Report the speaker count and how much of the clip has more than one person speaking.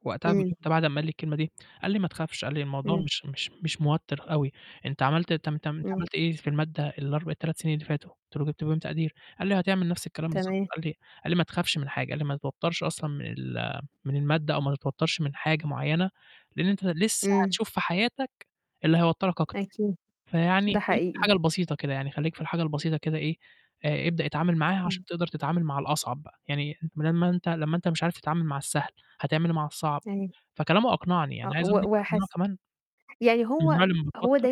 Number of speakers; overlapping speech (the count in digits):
2, about 10%